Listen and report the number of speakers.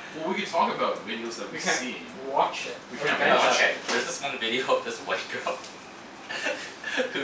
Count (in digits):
3